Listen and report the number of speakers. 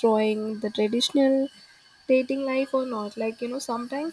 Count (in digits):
1